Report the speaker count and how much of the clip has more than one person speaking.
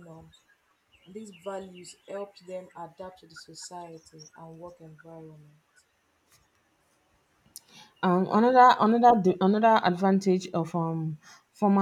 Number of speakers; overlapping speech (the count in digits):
2, no overlap